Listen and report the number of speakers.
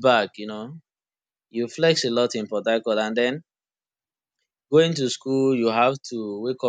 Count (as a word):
one